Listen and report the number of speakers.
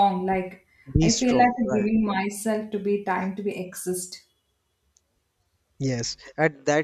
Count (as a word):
two